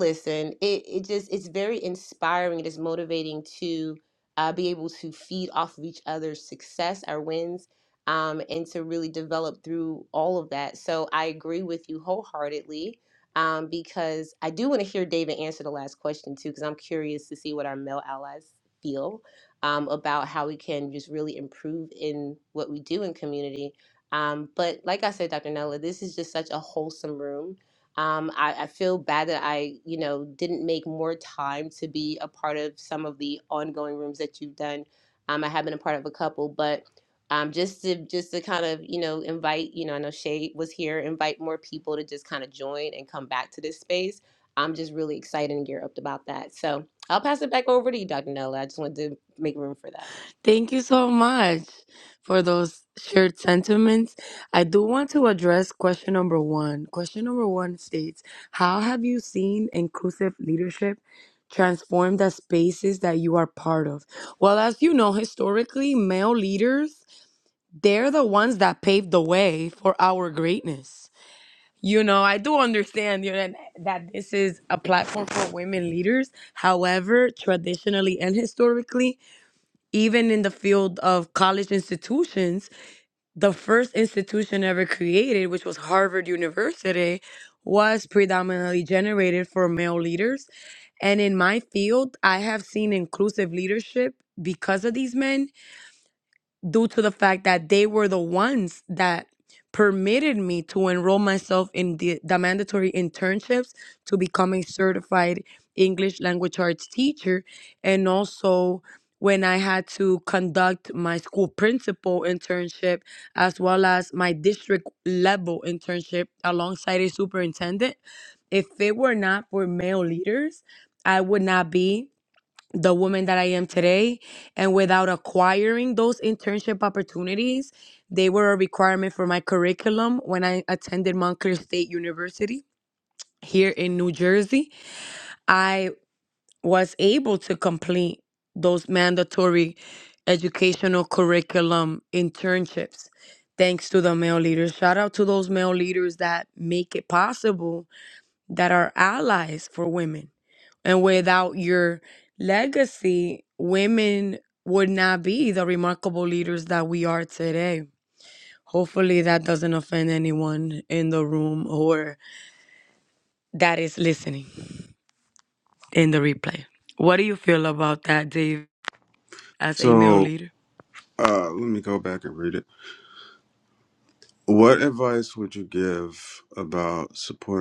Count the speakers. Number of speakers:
3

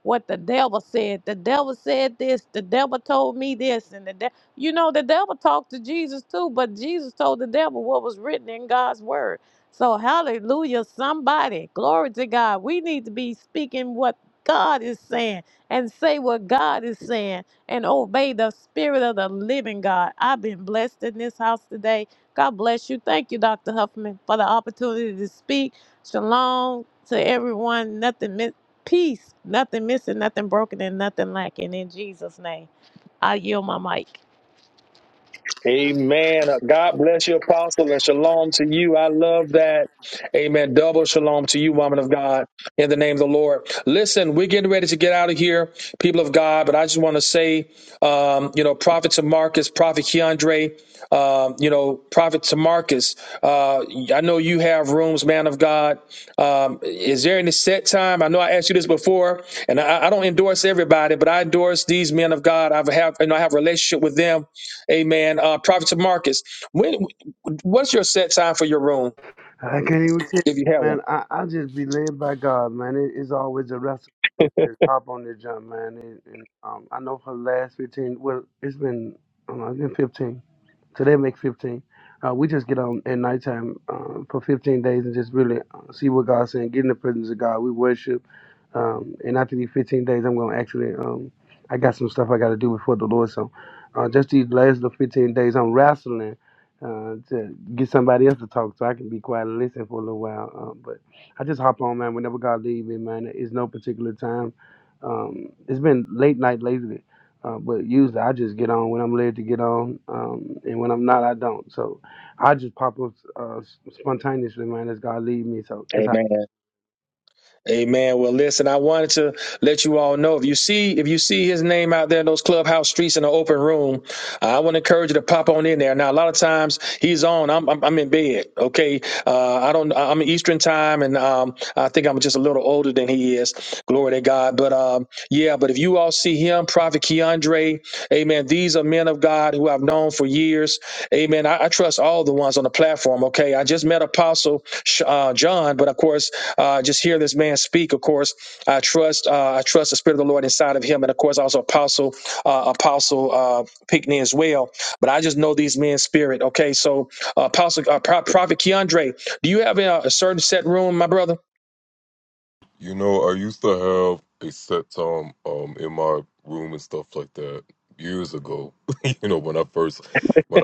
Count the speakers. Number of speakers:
4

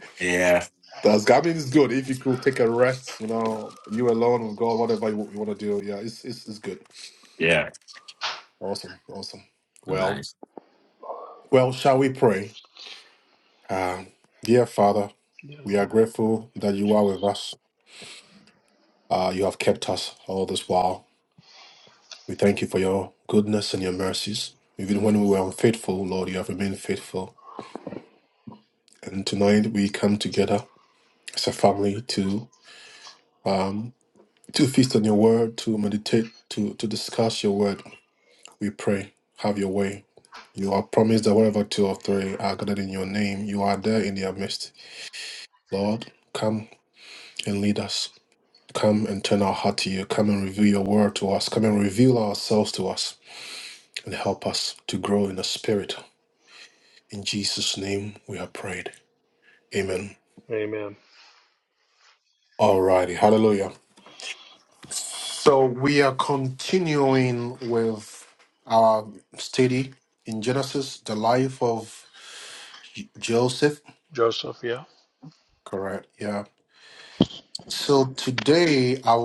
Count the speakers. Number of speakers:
3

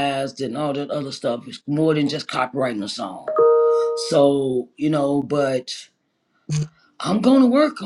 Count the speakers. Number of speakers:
1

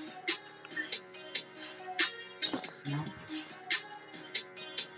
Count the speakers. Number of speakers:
0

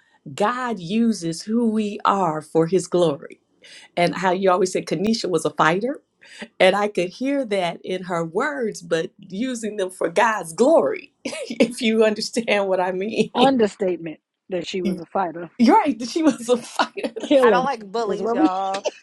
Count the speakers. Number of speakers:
3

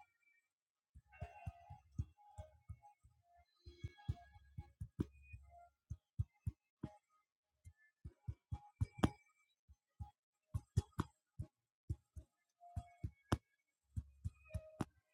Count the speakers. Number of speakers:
0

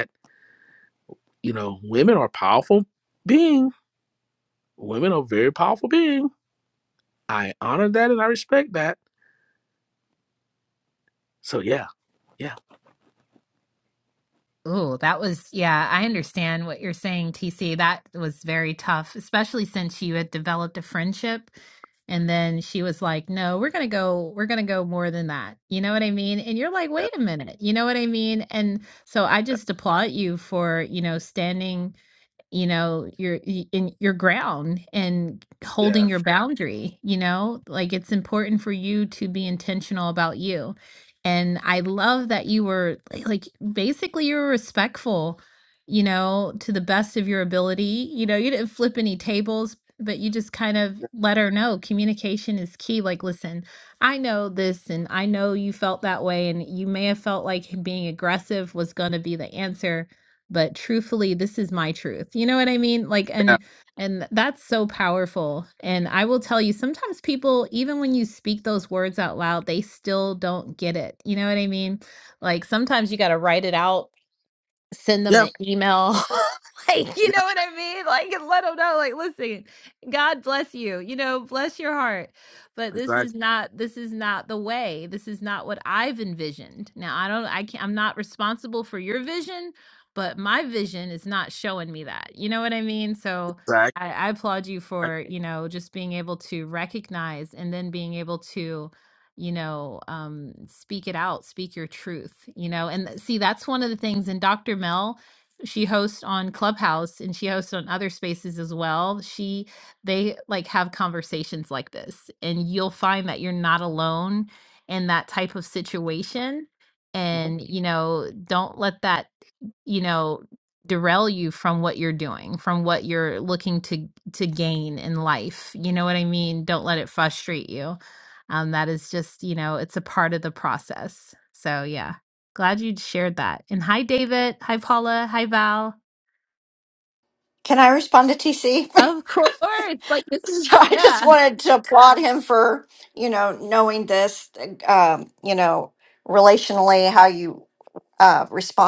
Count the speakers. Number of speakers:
3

